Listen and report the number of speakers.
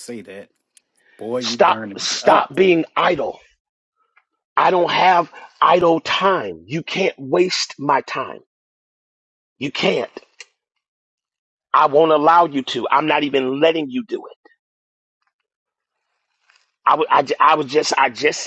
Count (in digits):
2